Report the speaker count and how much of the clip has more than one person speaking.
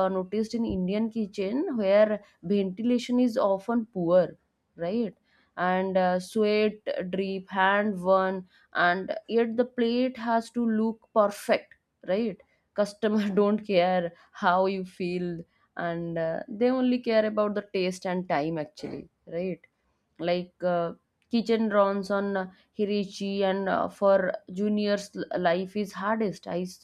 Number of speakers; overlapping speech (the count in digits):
1, no overlap